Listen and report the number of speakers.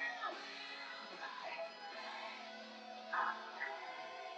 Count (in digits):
0